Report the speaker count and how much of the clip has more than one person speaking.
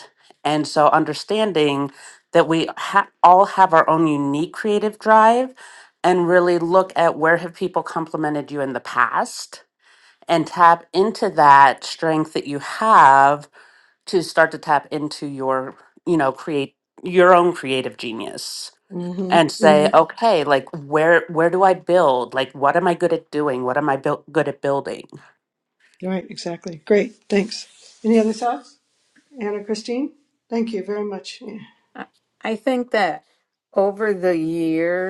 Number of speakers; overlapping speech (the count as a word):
three, about 2%